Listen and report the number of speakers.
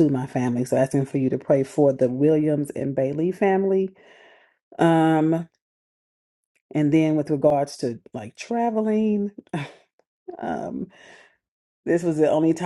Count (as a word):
one